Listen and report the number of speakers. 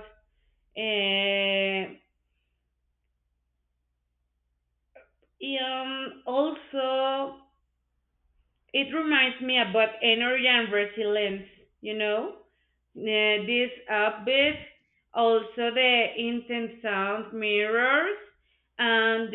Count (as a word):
one